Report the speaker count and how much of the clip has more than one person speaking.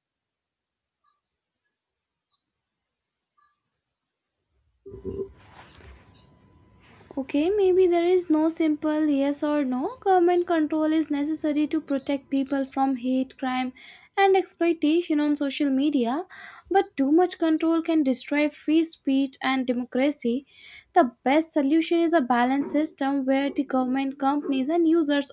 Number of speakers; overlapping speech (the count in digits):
1, no overlap